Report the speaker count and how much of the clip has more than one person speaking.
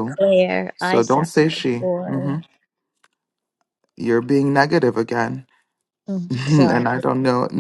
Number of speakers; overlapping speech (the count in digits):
2, about 26%